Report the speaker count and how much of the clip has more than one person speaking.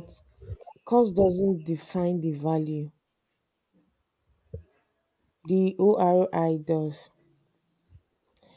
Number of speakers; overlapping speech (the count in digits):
1, no overlap